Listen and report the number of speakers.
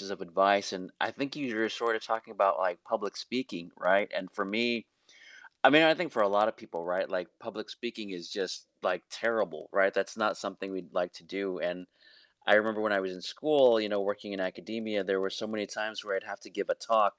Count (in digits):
1